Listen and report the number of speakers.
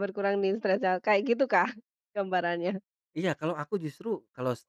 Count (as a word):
two